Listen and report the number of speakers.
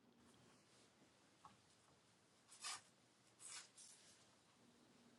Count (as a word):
zero